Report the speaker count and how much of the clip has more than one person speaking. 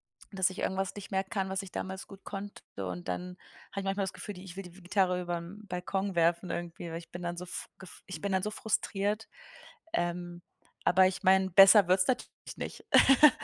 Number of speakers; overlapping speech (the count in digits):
1, no overlap